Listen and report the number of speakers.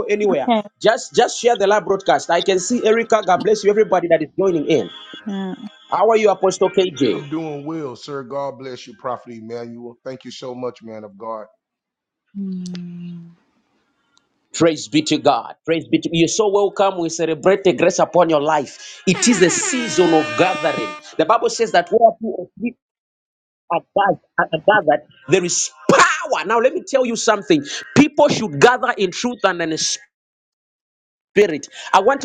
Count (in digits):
3